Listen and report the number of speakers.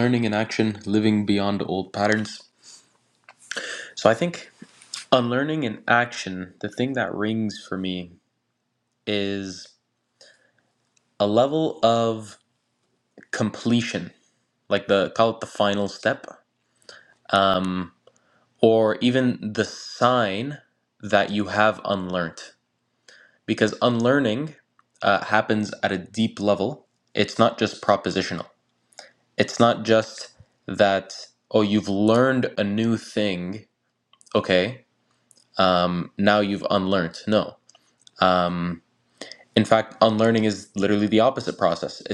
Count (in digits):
1